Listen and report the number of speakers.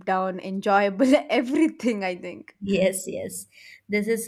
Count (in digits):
2